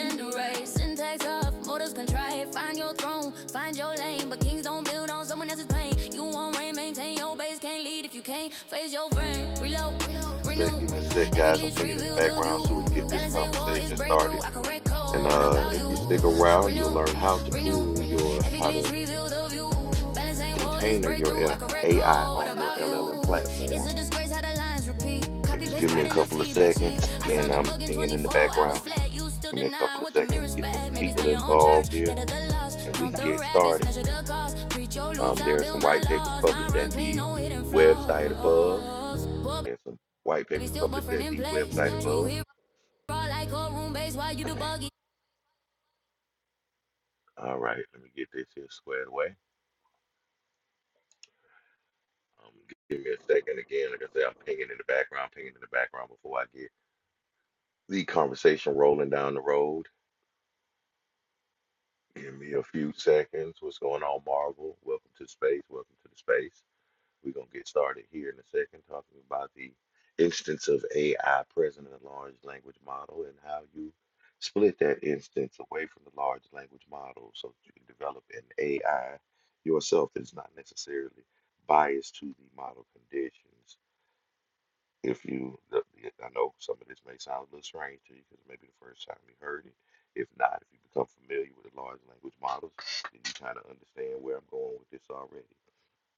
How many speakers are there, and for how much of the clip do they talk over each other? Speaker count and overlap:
2, about 22%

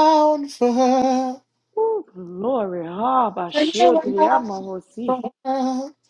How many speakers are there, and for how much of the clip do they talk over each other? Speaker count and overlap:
2, about 19%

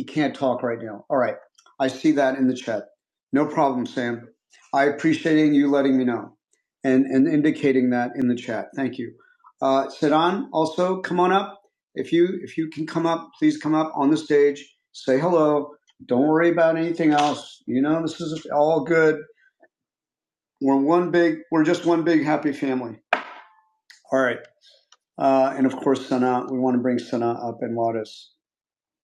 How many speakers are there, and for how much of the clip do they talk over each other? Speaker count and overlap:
1, no overlap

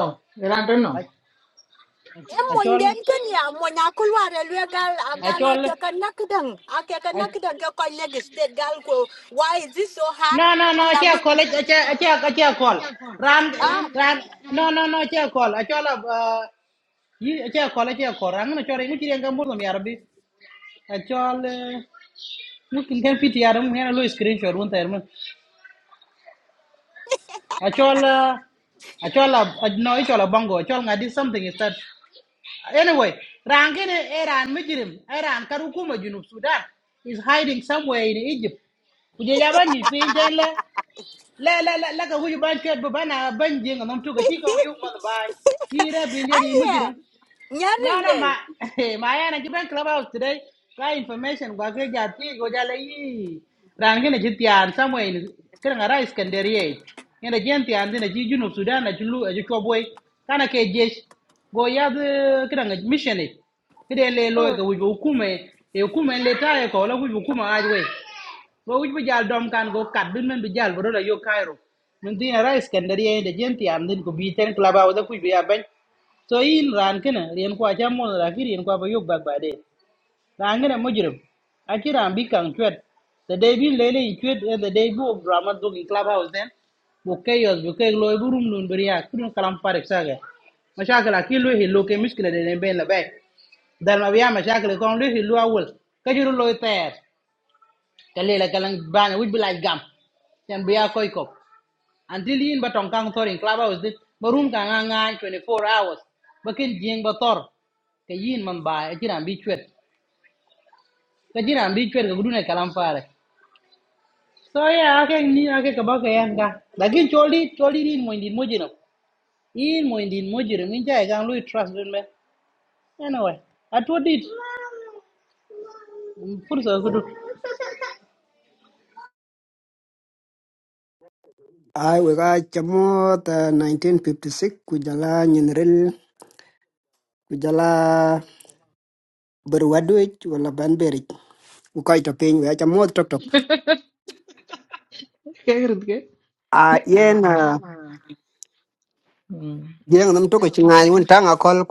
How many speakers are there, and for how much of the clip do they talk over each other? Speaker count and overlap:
4, about 1%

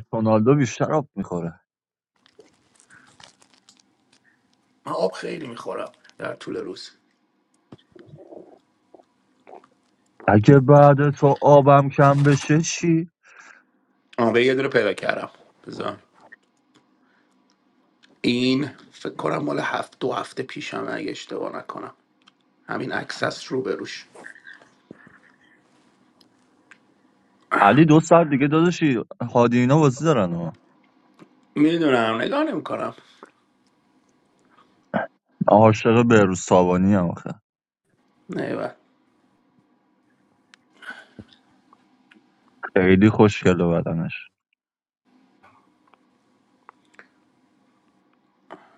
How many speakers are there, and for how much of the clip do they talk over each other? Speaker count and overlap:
2, no overlap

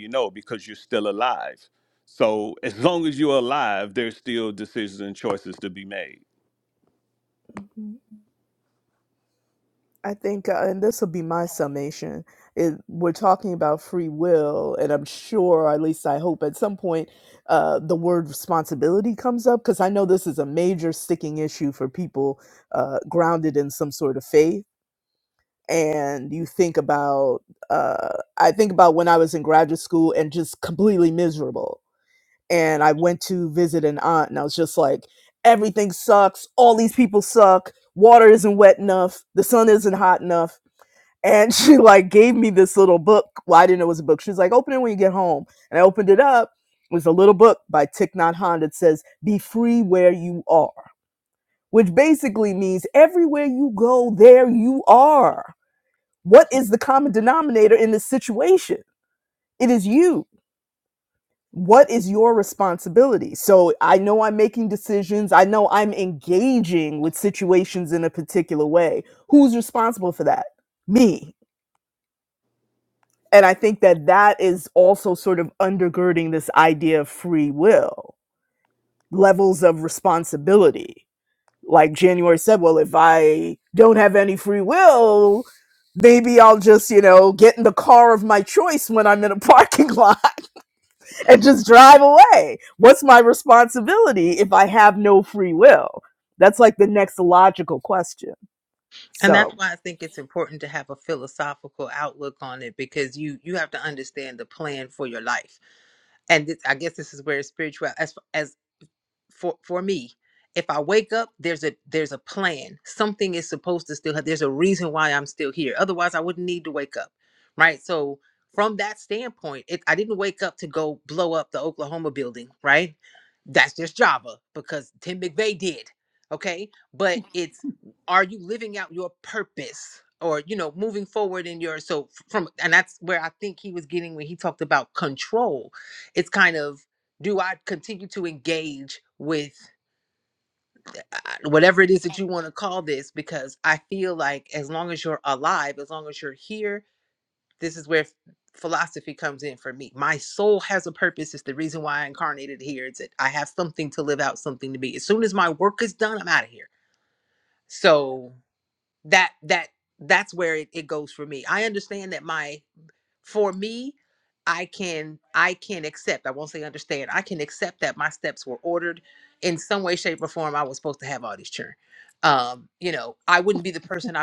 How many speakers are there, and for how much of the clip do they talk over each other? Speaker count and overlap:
3, under 1%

